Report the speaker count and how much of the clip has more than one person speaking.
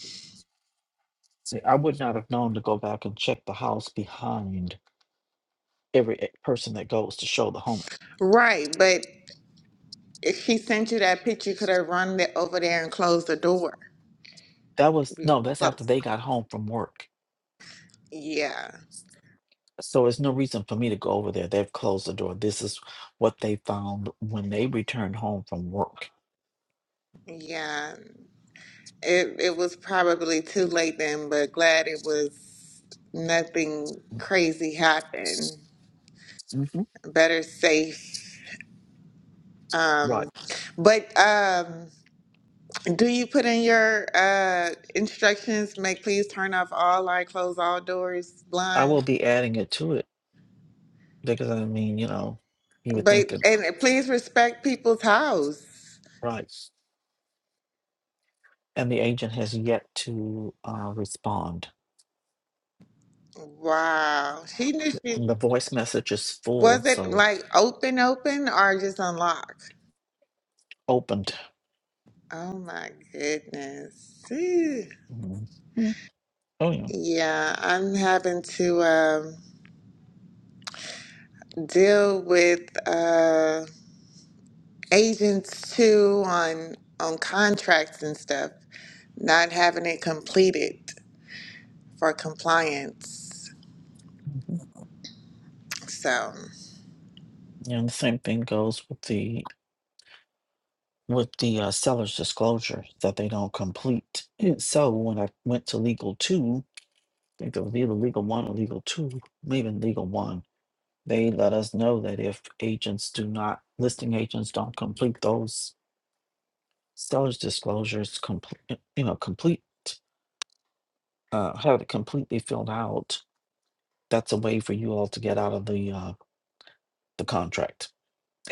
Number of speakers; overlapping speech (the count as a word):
two, about 2%